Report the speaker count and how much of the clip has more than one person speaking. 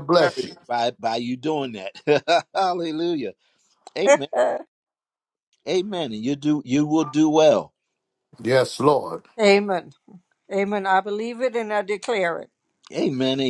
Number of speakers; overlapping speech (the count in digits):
3, about 3%